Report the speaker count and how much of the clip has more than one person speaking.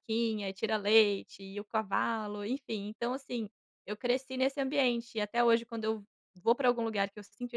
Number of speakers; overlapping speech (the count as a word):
one, no overlap